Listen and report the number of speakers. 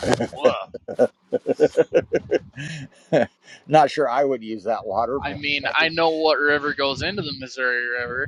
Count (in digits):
2